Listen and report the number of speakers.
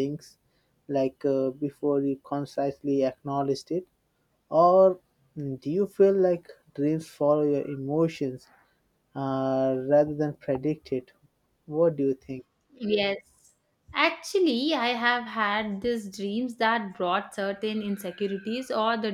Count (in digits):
2